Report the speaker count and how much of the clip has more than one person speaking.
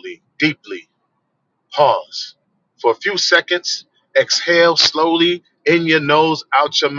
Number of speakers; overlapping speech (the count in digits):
1, no overlap